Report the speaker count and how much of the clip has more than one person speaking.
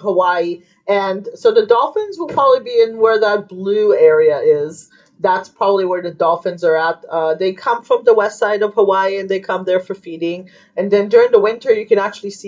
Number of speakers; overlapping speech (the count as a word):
one, no overlap